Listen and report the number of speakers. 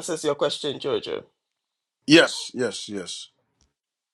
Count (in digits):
2